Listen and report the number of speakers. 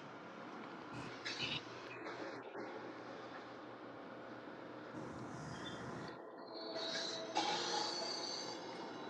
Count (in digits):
0